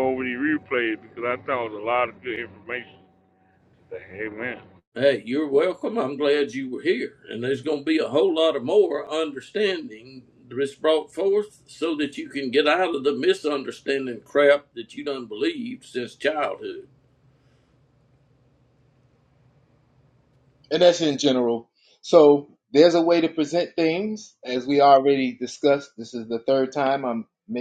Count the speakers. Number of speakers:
three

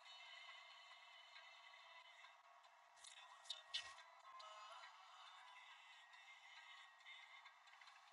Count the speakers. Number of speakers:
zero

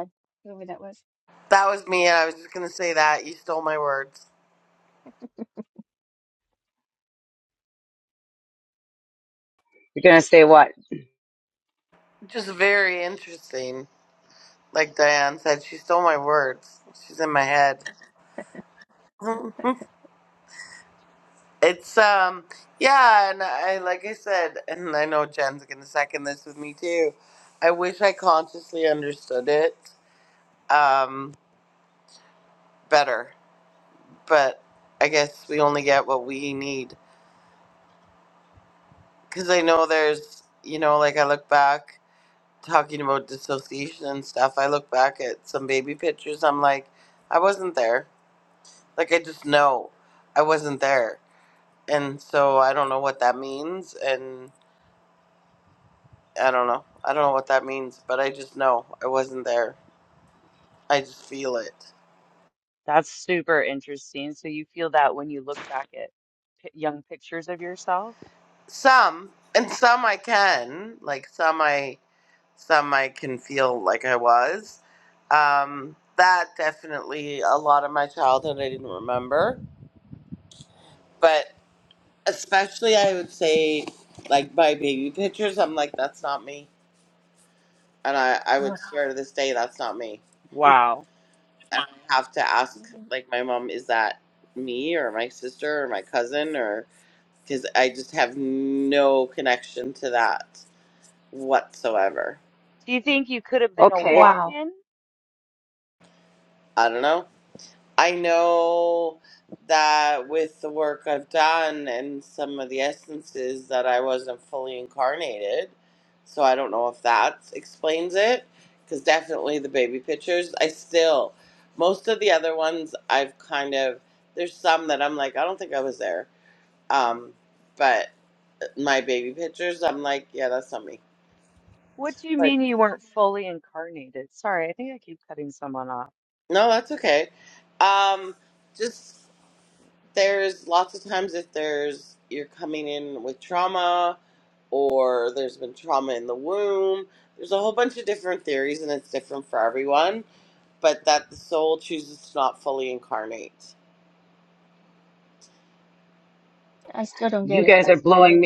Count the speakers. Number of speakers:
four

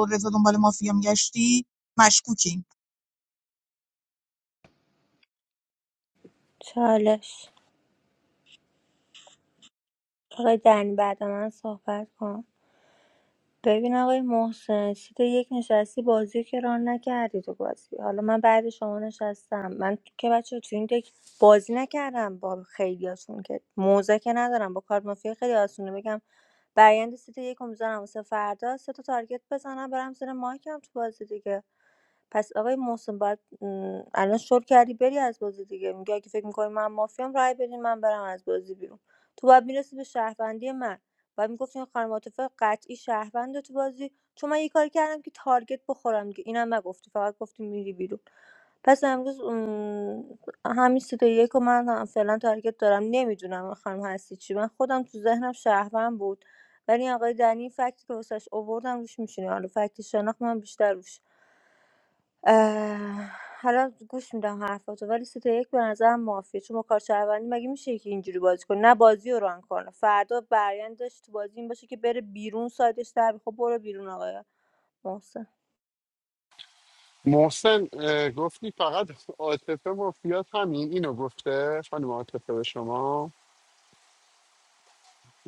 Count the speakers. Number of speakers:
three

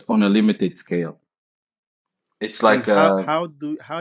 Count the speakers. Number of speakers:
two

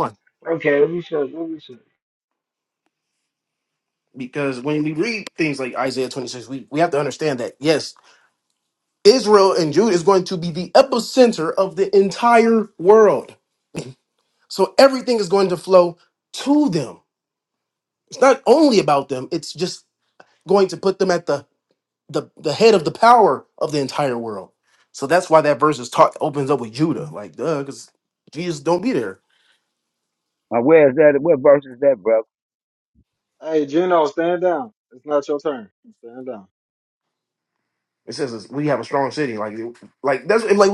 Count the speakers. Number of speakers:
four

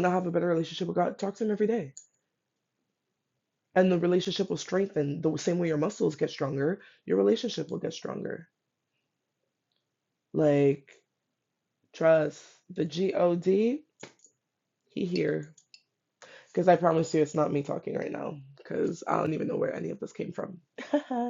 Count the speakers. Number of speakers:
one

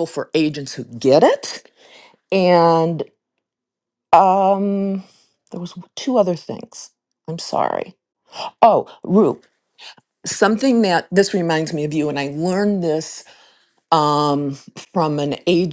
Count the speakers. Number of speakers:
one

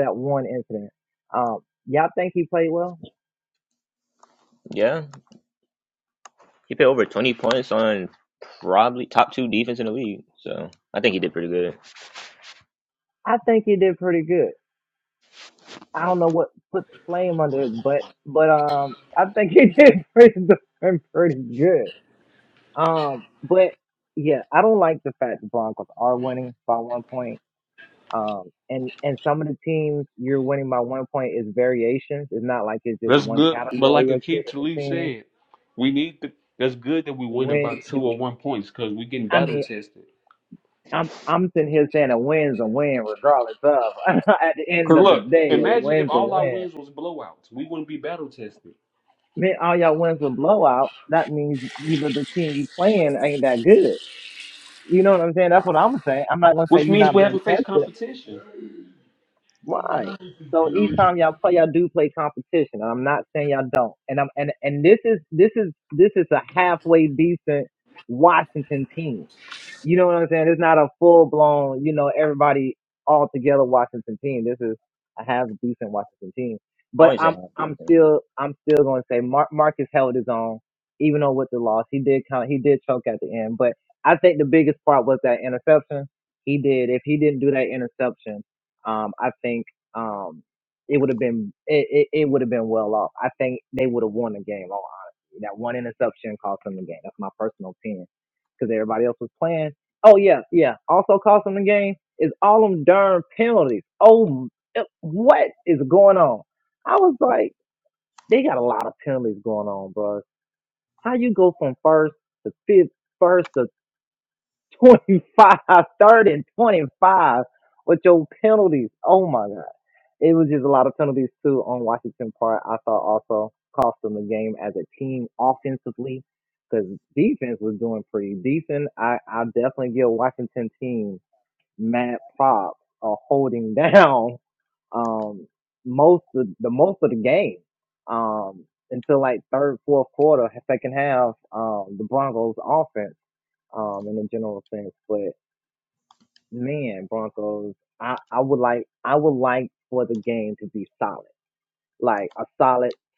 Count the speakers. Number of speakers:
three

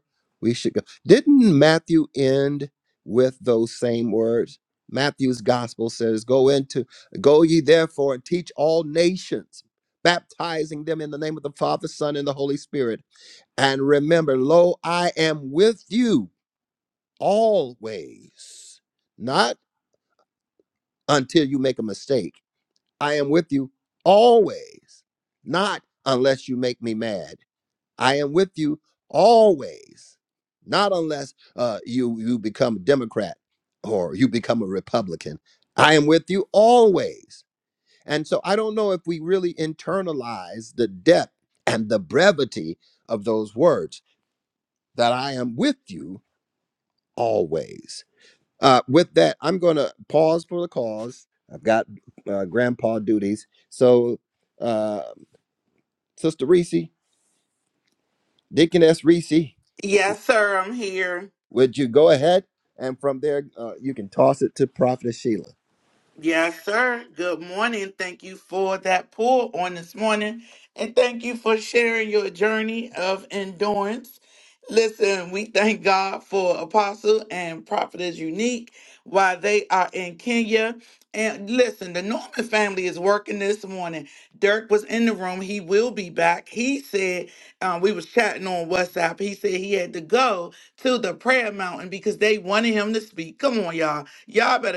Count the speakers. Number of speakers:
two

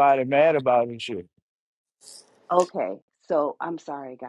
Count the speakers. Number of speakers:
two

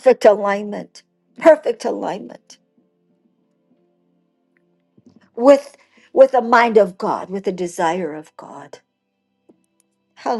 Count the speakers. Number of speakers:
one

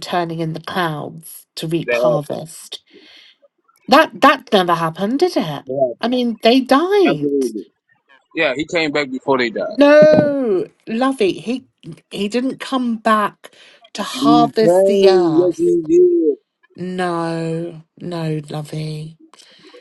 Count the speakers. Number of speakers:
two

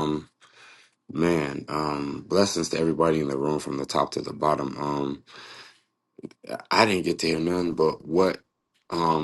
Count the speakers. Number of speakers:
one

